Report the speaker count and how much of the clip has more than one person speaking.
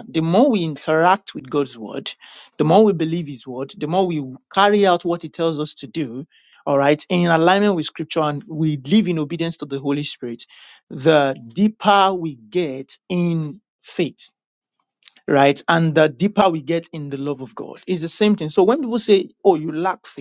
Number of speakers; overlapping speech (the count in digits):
1, no overlap